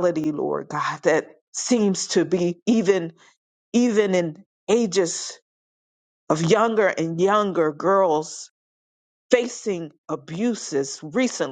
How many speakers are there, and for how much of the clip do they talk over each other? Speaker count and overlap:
one, no overlap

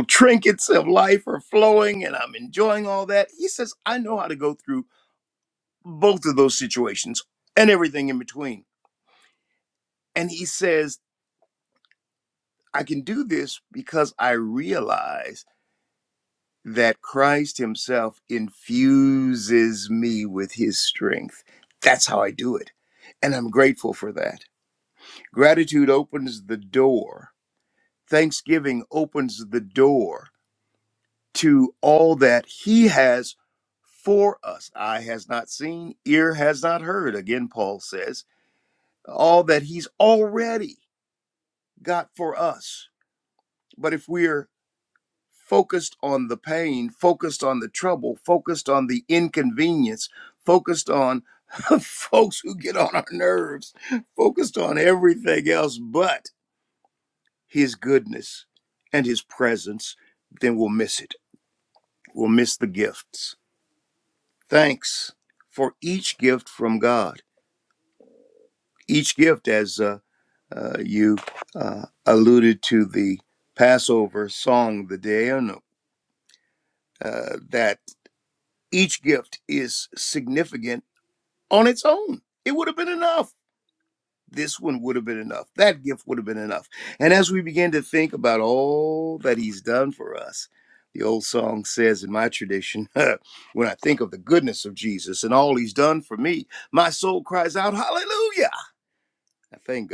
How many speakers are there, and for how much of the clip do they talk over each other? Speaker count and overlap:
one, no overlap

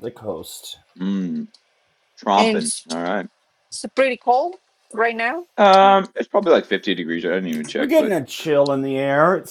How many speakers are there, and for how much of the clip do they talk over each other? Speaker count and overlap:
three, about 10%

